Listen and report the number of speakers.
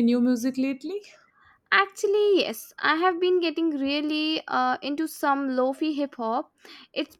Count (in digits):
2